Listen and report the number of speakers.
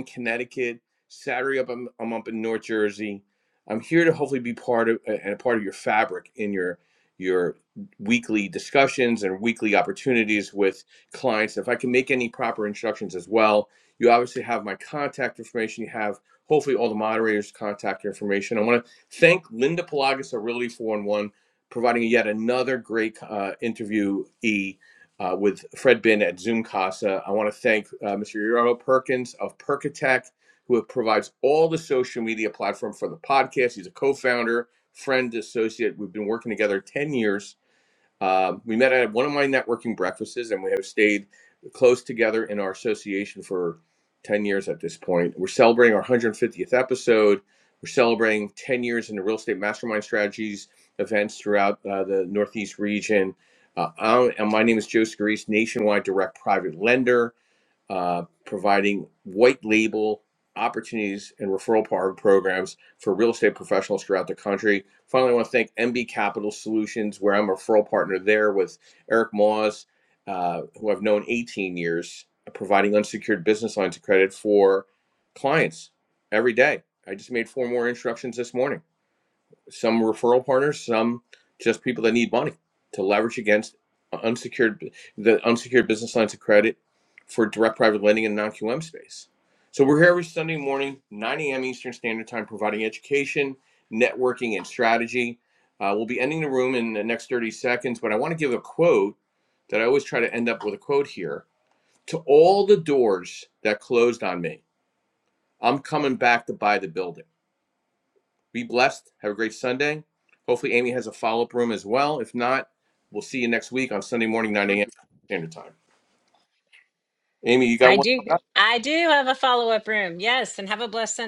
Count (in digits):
2